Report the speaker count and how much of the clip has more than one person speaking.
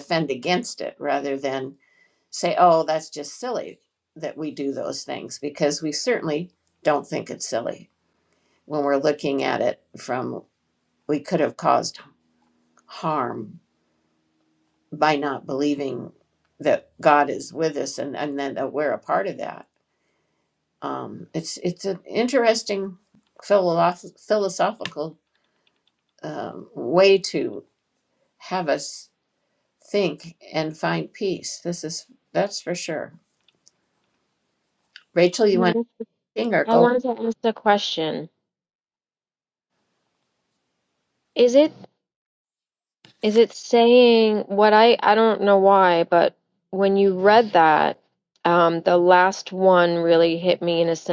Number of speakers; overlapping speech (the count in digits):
2, about 1%